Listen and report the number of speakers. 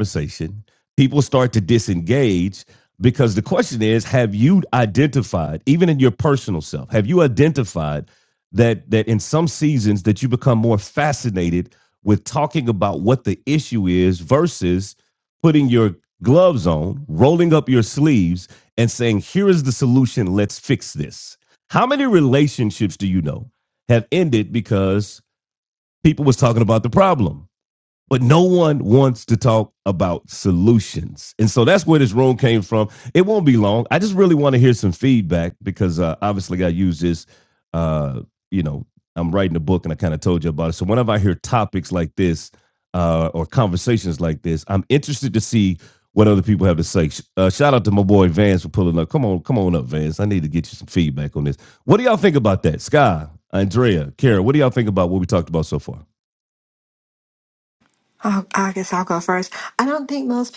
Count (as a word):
two